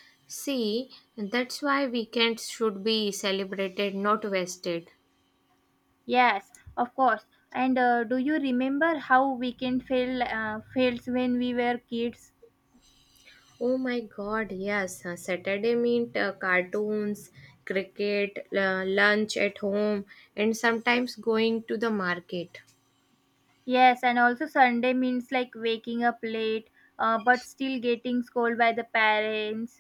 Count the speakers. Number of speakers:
two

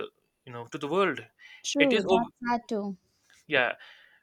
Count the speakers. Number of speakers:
two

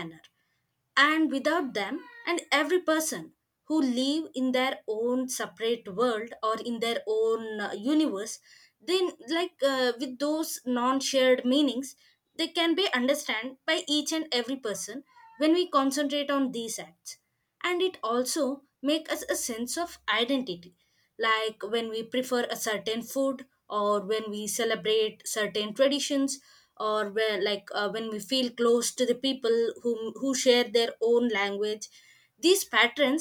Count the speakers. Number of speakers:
one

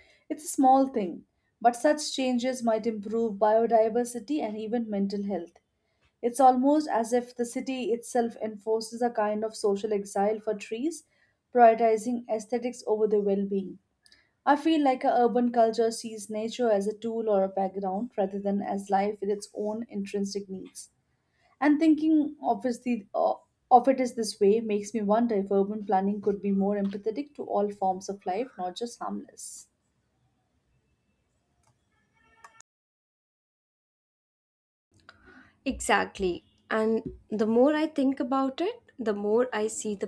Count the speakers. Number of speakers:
two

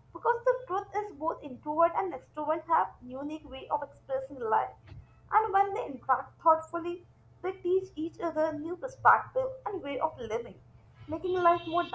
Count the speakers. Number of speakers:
one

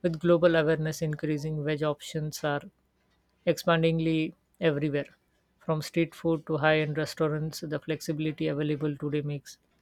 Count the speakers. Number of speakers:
one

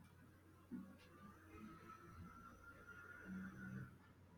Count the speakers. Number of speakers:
zero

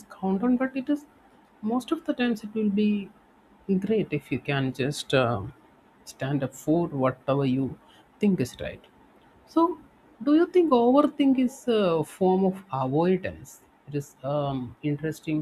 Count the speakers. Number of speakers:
one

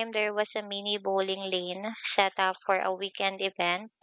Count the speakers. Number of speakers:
one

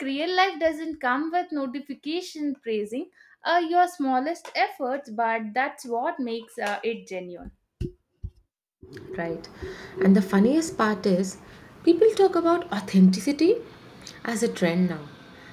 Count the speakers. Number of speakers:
two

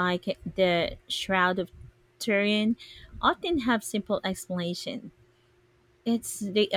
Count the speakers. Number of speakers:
one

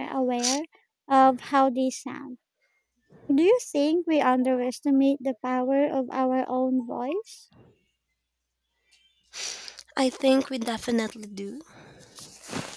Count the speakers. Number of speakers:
two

